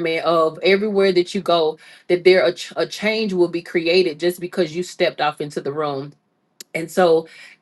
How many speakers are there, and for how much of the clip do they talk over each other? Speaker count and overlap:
1, no overlap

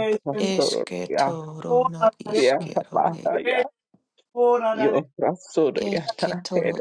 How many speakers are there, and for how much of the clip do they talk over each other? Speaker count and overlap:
3, about 50%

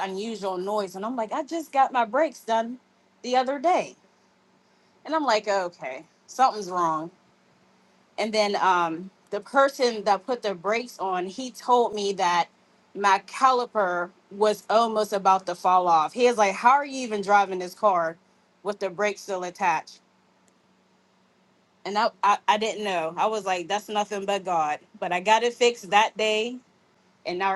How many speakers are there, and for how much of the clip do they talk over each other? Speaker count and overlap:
1, no overlap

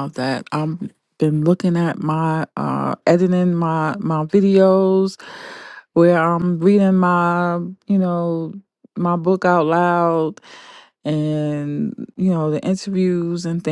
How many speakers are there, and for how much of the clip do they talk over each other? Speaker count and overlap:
1, no overlap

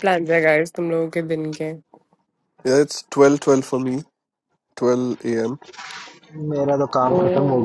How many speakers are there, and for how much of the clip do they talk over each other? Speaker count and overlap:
3, about 7%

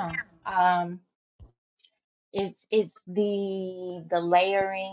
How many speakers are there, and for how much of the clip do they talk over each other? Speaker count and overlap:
1, no overlap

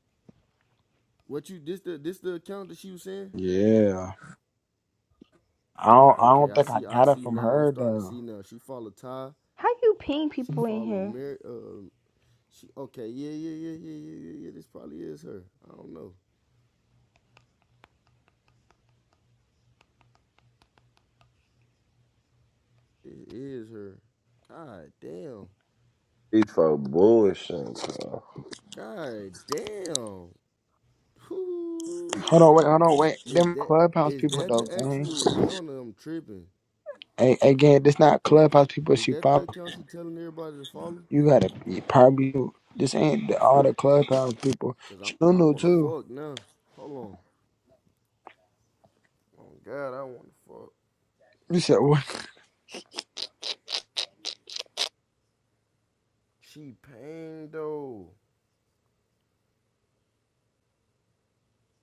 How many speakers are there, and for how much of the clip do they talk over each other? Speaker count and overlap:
4, about 9%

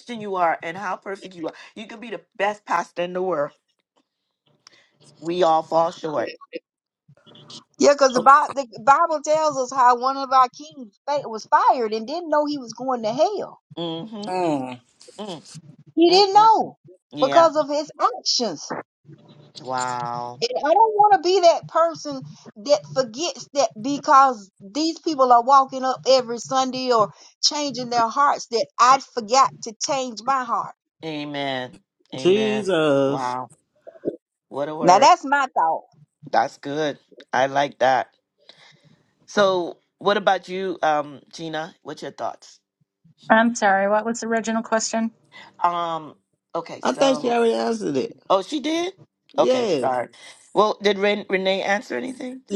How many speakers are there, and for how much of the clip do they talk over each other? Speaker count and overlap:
4, about 5%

